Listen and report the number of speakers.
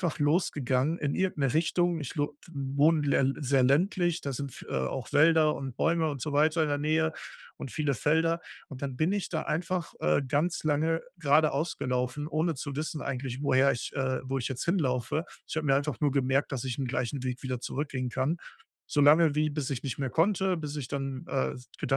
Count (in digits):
1